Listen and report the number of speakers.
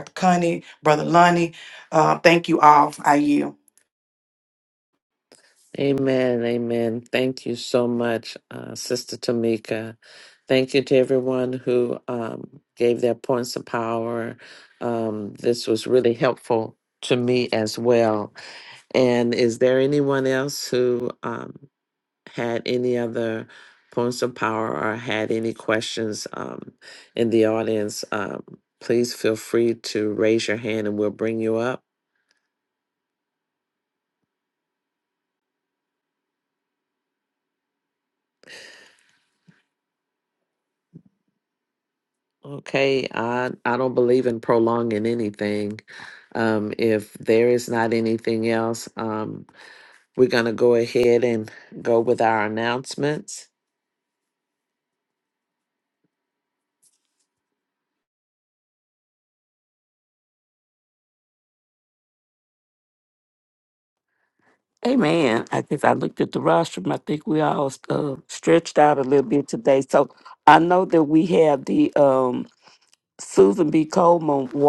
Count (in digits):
3